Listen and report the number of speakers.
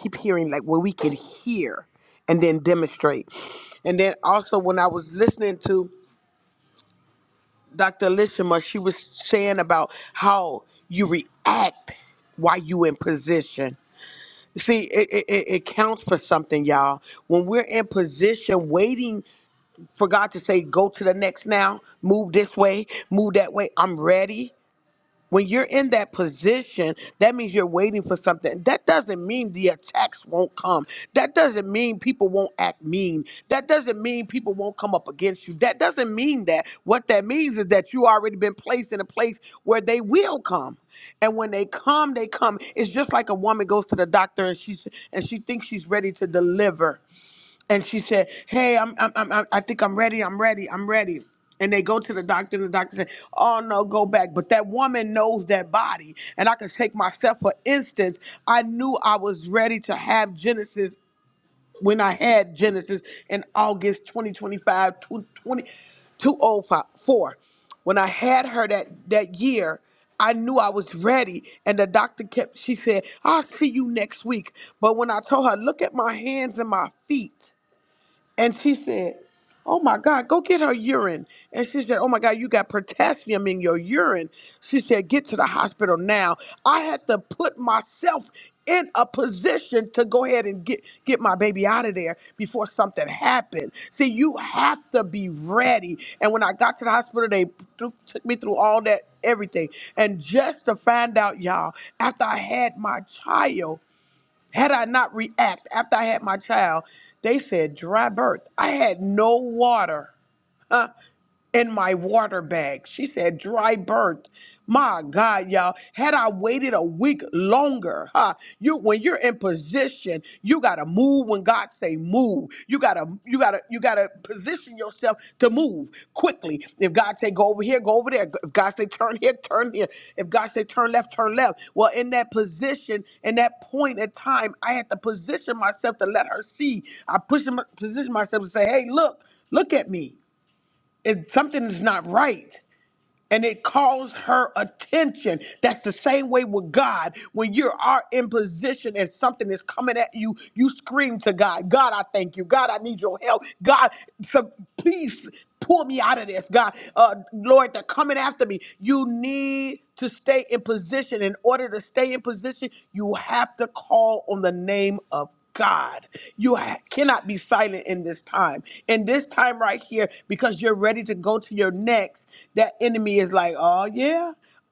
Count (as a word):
one